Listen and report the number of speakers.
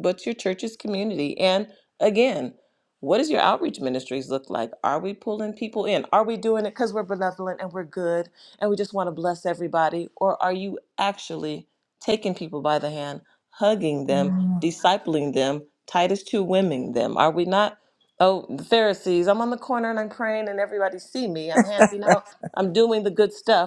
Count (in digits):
1